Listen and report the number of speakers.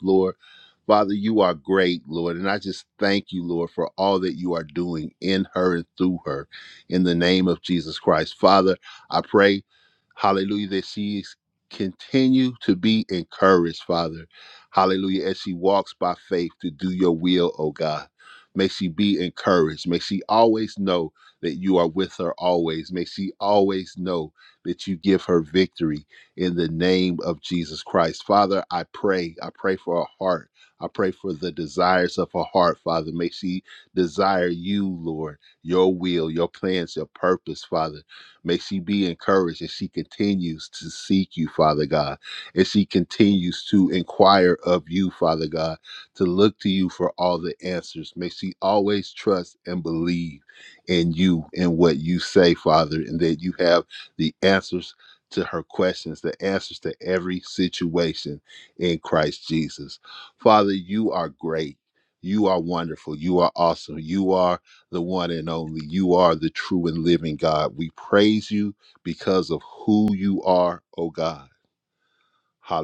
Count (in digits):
1